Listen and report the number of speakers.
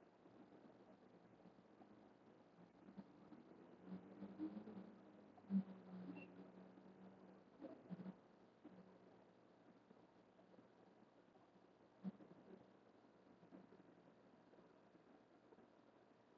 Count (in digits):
0